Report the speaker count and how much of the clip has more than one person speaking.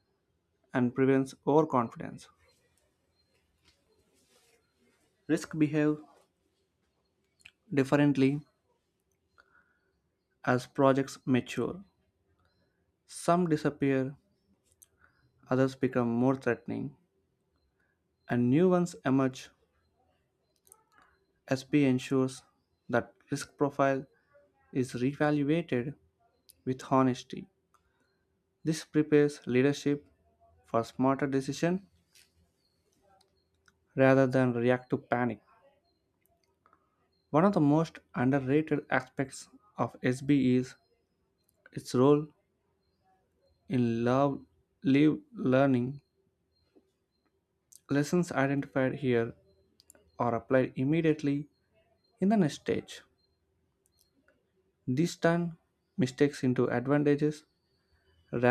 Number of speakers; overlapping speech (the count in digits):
1, no overlap